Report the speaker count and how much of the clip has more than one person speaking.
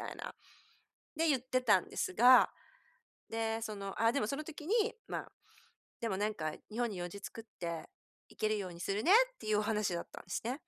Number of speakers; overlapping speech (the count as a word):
one, no overlap